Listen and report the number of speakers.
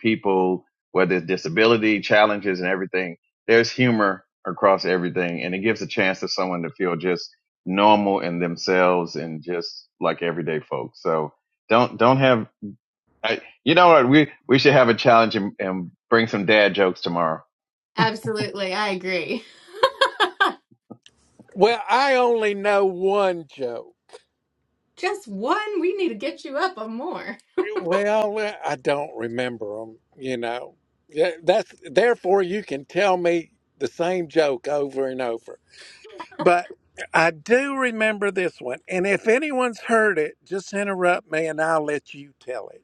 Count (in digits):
3